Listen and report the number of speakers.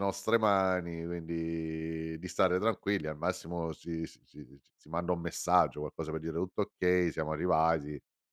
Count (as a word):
one